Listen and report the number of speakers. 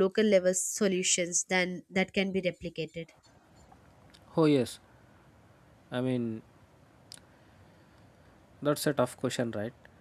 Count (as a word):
two